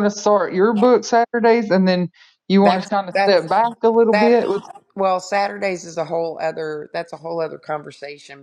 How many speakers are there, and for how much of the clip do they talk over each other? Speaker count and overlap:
2, about 14%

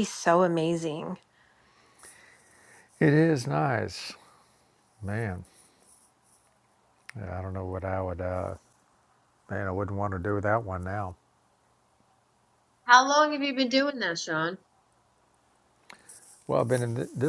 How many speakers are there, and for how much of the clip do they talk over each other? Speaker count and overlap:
3, no overlap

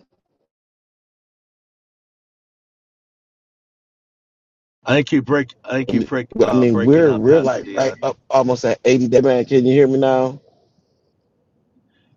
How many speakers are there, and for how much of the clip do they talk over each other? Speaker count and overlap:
2, about 18%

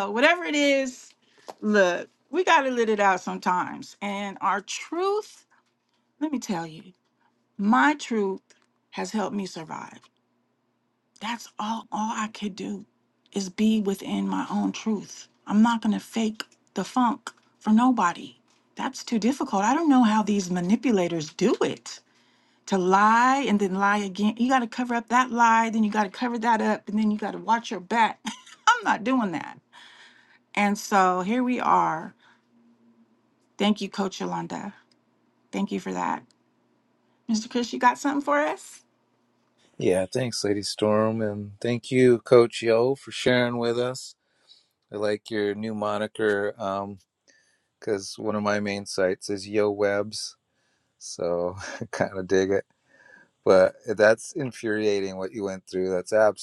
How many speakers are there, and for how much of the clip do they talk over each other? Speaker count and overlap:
2, no overlap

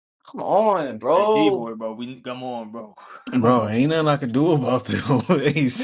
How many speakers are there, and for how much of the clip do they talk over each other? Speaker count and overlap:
3, about 11%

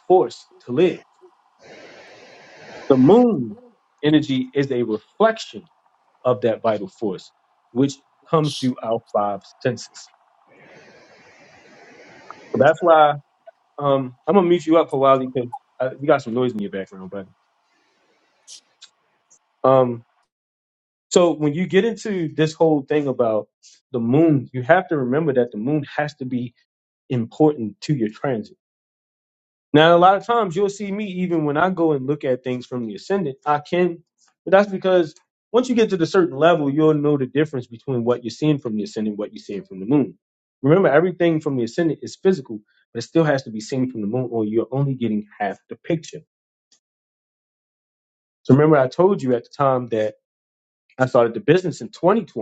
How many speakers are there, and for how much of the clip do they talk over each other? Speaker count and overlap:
1, no overlap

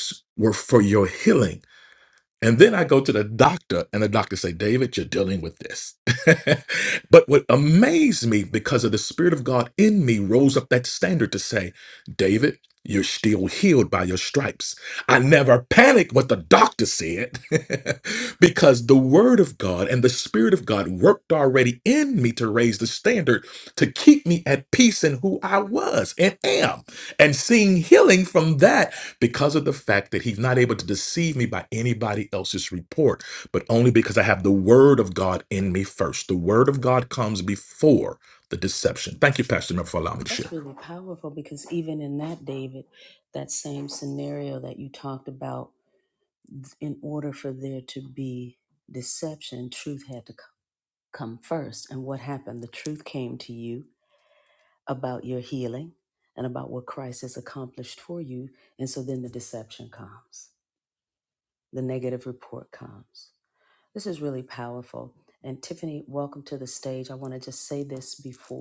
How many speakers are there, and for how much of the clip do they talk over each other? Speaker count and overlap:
2, under 1%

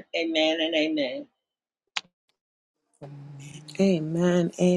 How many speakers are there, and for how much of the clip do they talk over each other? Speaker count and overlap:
2, no overlap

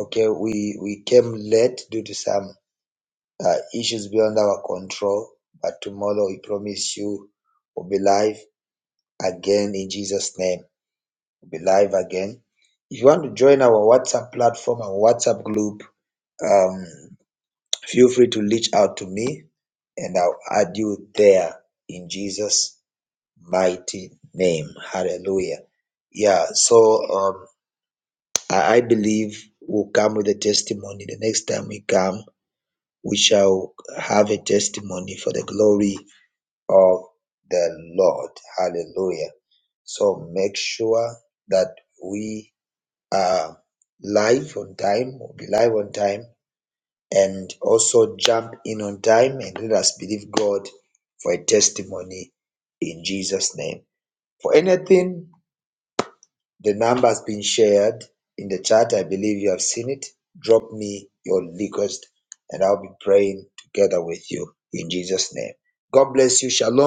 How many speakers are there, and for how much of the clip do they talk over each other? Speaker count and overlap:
1, no overlap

